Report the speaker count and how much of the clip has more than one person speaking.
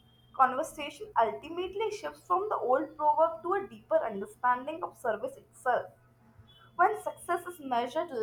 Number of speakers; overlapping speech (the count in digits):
1, no overlap